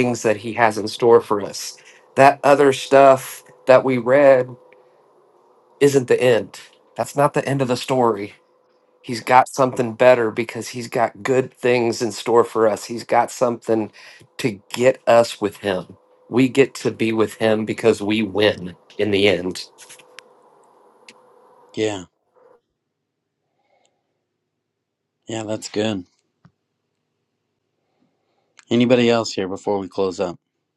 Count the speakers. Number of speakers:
2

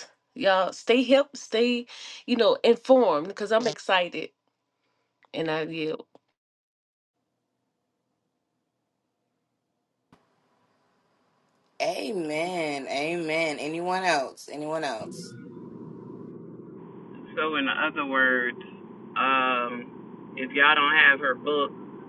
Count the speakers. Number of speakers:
3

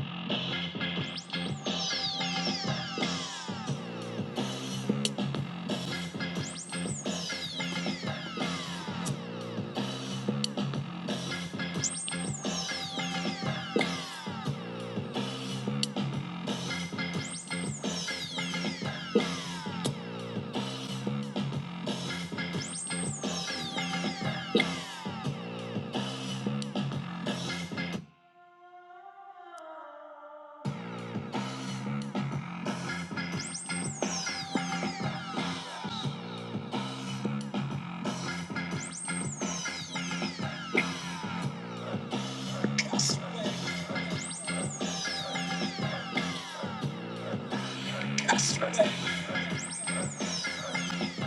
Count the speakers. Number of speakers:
0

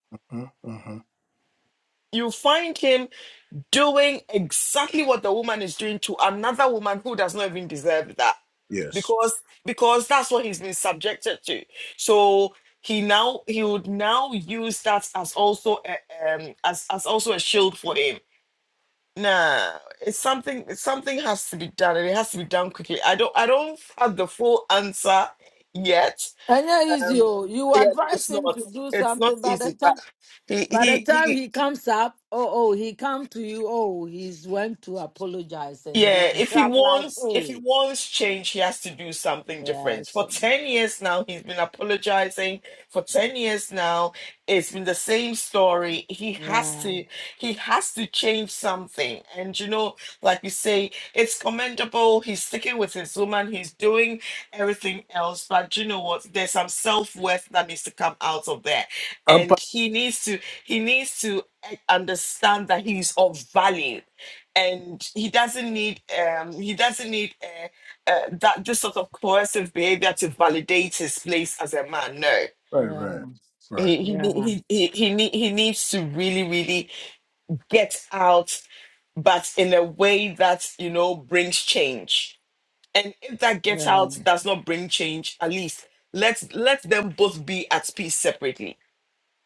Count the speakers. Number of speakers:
3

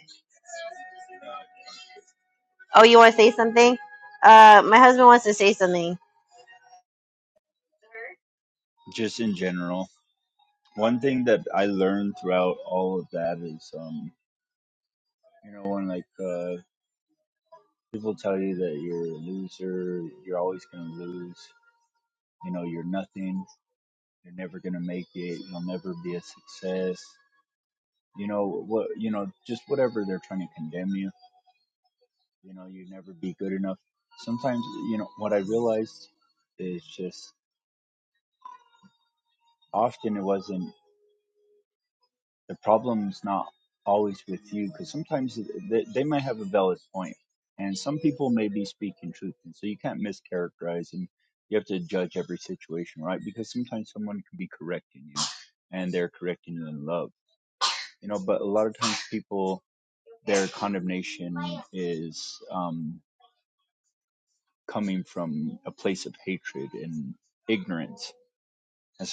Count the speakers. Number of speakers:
2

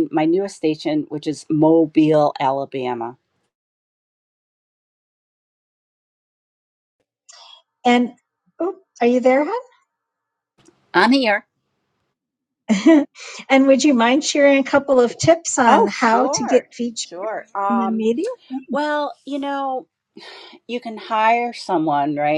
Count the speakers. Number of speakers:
2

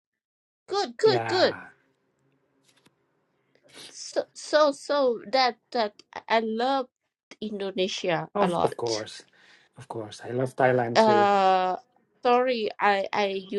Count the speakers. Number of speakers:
2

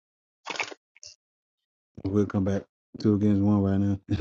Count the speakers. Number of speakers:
1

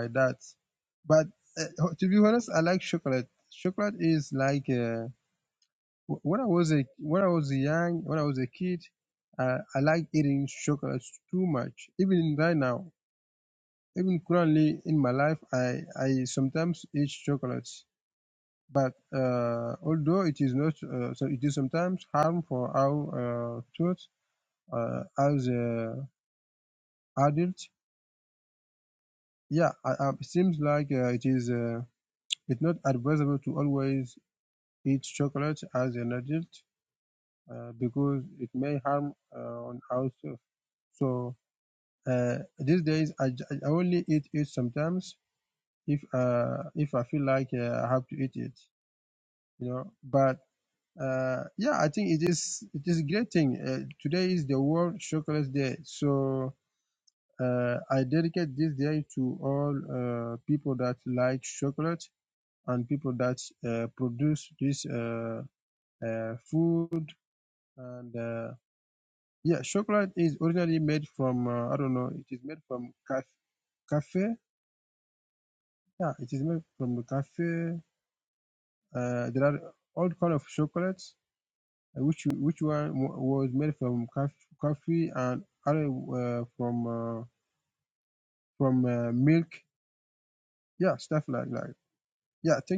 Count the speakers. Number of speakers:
1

